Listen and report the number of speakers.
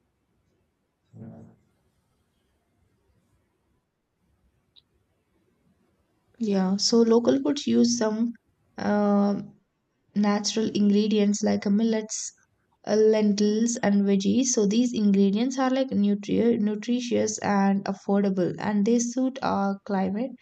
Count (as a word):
one